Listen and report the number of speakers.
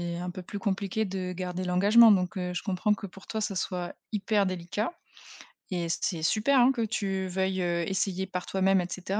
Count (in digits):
1